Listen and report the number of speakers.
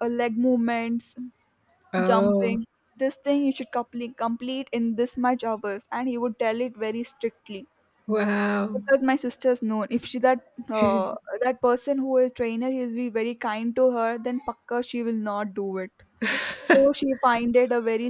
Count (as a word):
two